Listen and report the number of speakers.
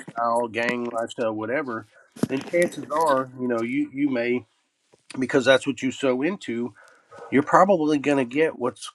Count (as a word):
one